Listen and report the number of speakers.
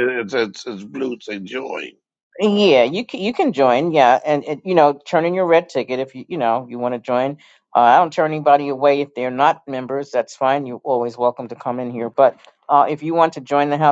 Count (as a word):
two